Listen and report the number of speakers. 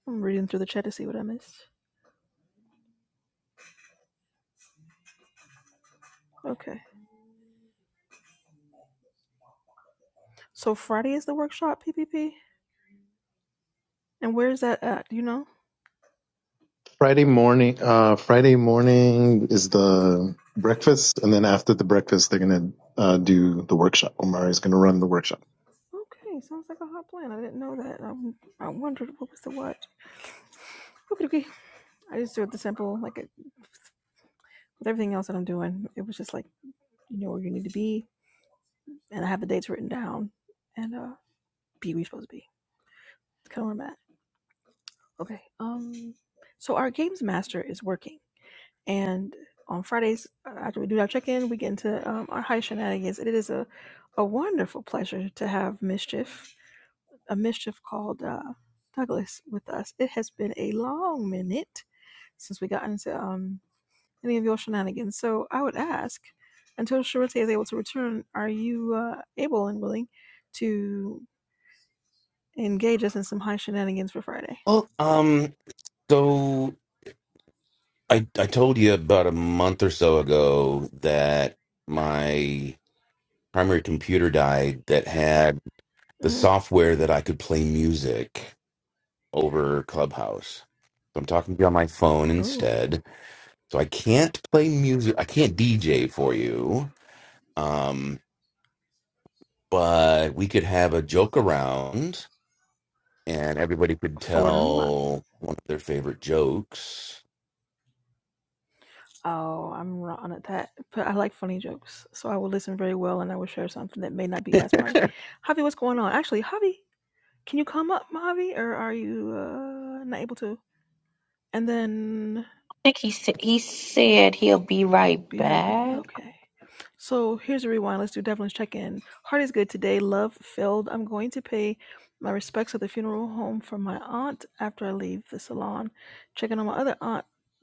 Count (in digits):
4